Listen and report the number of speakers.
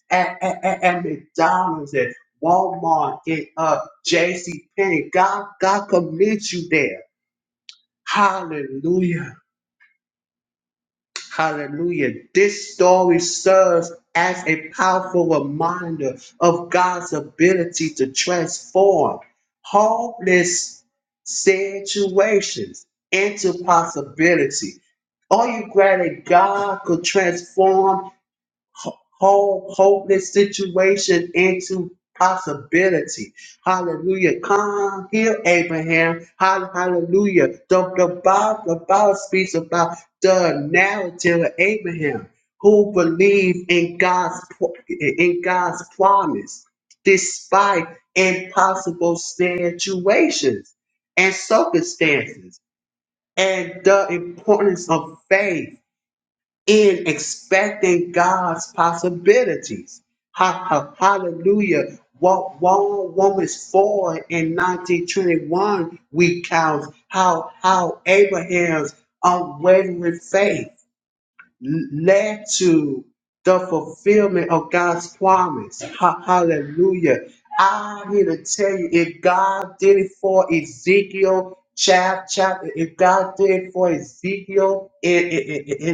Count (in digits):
1